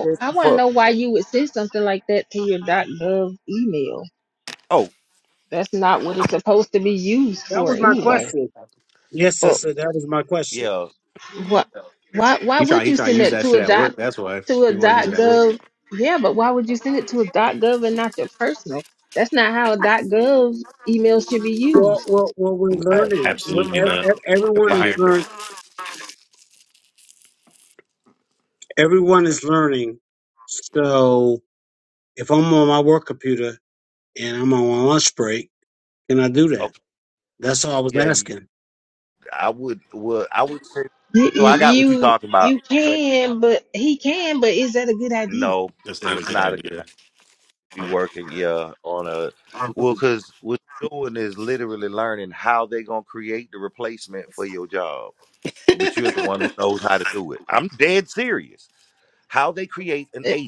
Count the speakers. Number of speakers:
four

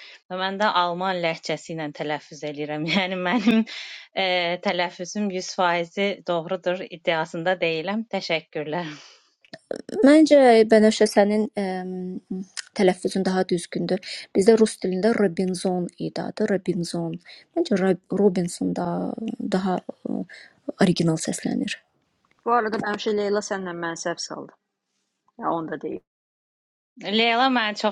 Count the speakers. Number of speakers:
three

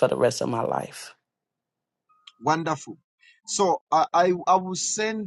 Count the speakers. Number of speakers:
two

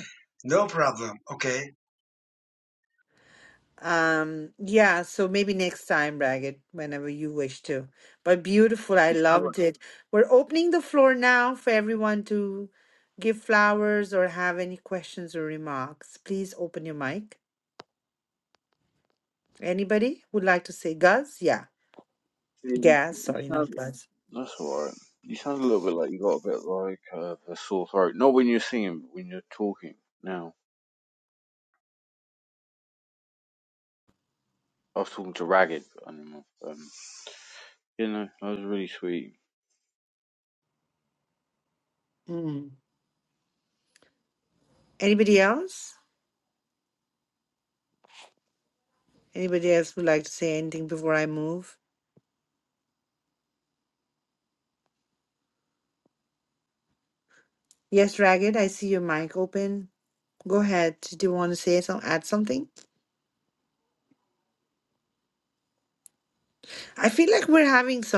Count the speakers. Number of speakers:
three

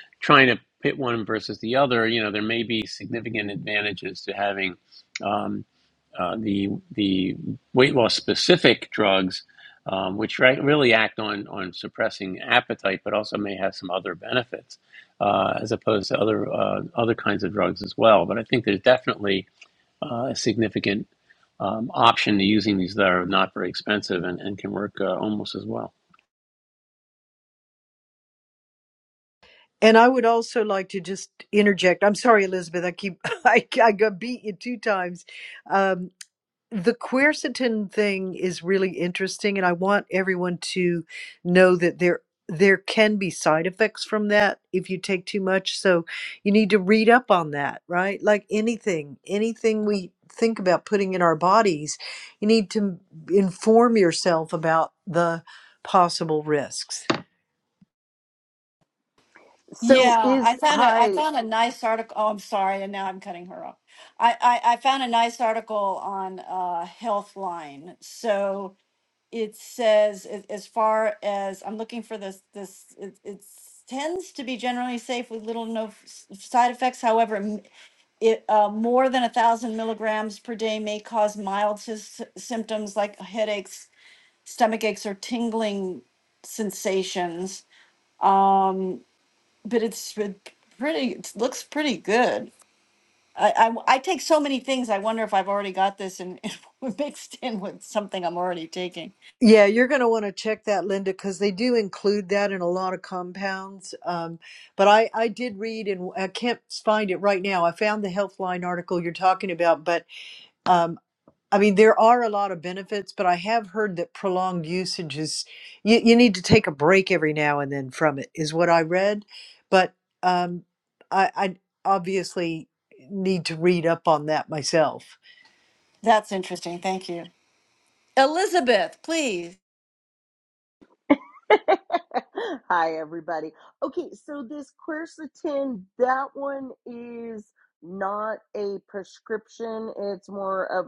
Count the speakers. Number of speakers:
four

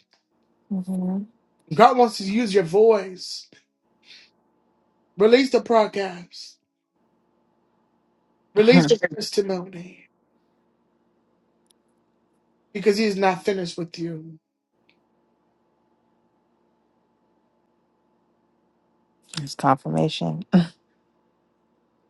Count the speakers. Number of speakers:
two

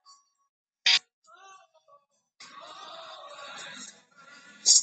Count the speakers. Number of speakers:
zero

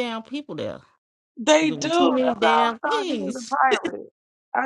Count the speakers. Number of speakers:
two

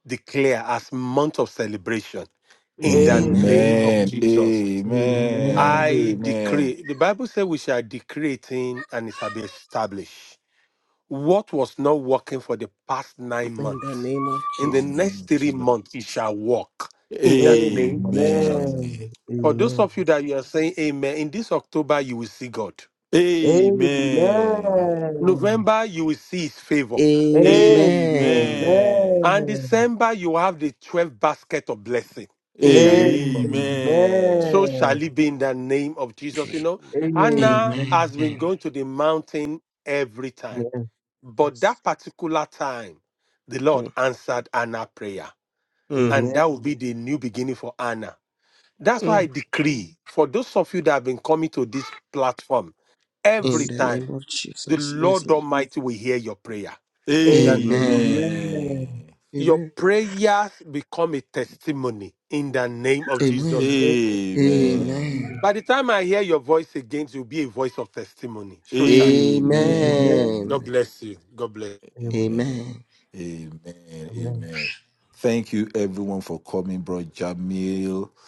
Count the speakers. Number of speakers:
four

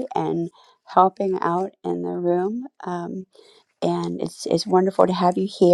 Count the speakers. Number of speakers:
one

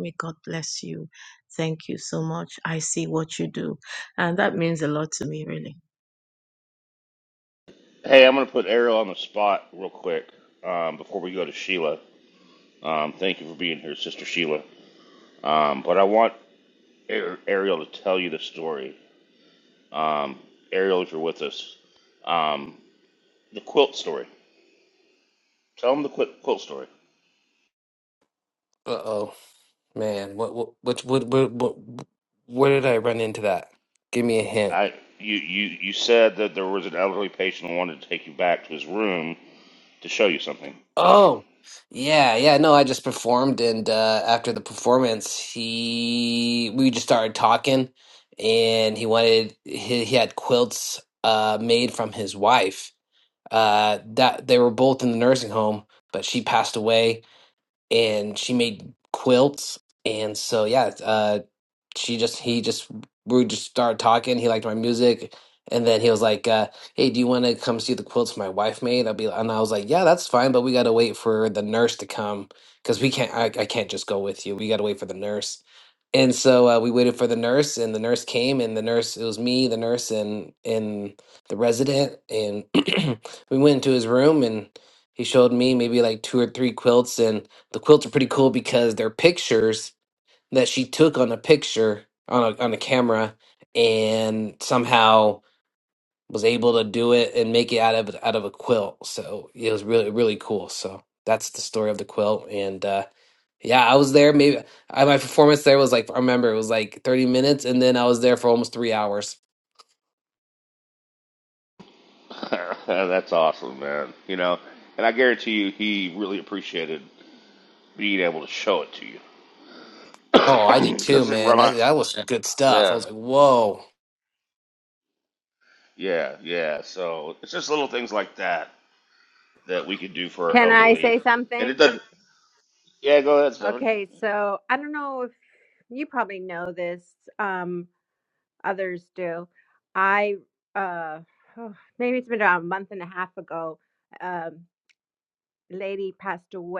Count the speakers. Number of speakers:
four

